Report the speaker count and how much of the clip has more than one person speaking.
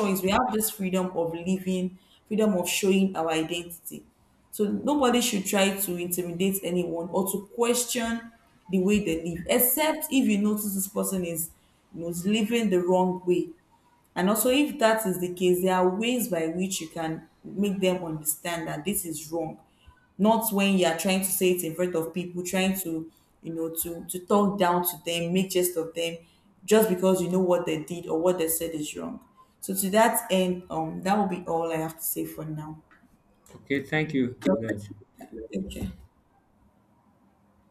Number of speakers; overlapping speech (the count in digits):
2, no overlap